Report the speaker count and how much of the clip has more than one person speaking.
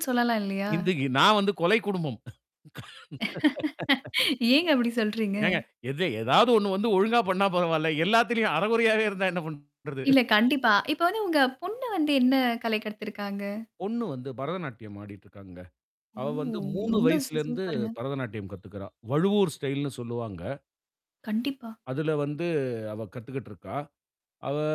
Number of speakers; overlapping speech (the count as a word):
two, about 5%